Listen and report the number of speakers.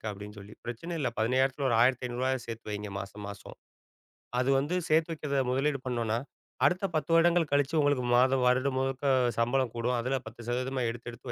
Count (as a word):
one